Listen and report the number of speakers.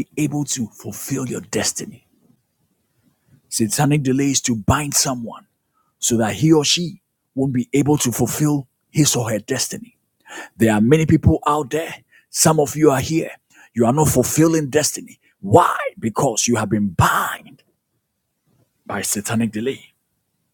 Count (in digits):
1